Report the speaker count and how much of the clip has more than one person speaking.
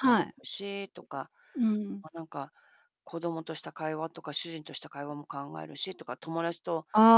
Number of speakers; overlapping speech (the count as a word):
two, about 4%